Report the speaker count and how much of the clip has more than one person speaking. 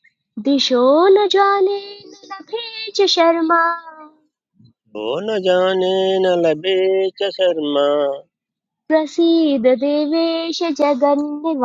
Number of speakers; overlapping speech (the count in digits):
2, no overlap